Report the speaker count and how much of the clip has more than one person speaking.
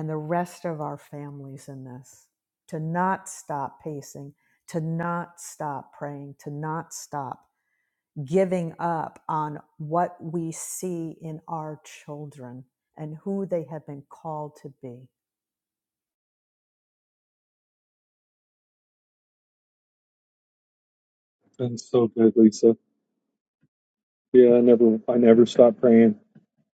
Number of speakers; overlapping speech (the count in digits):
2, no overlap